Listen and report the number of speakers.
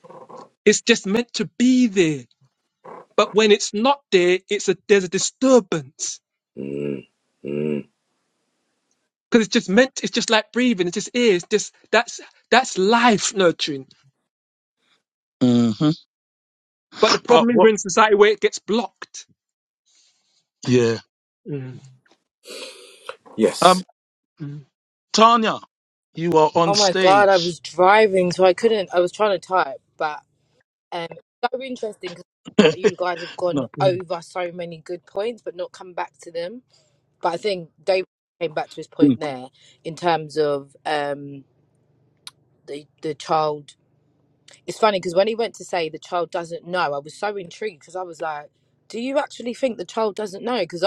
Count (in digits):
4